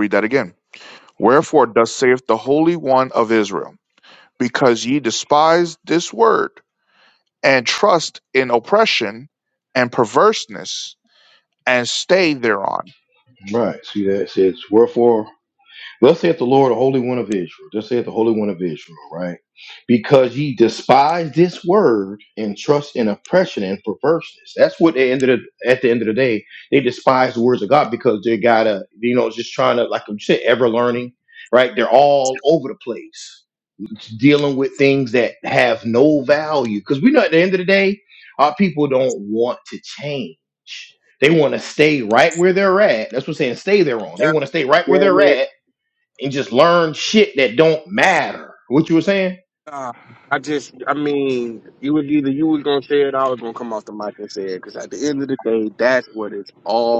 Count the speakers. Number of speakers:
3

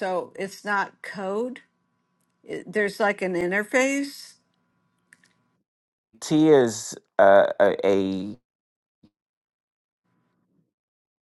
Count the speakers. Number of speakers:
2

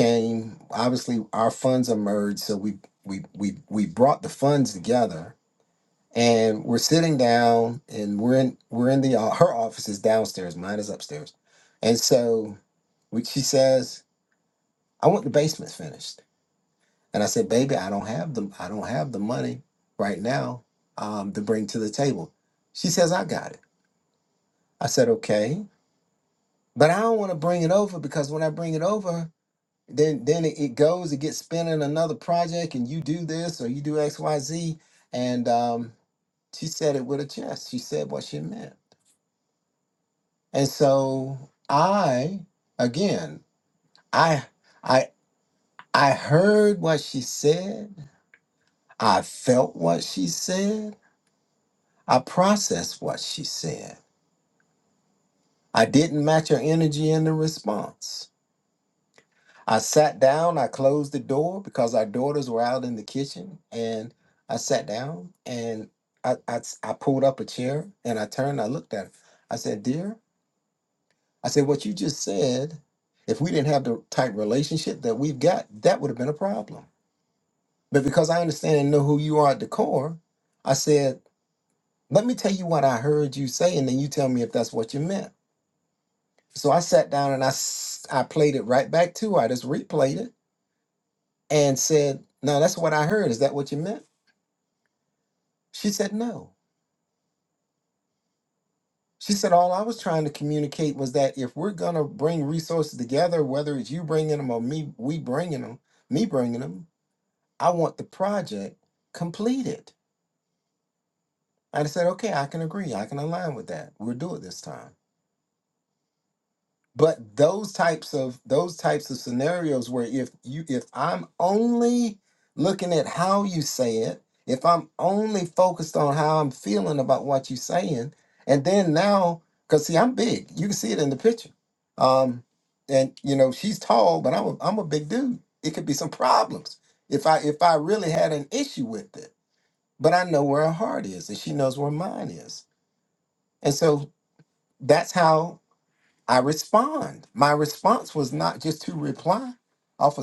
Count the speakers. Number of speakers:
1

